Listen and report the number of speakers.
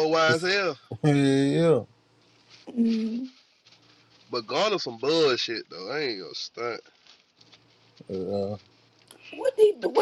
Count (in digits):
3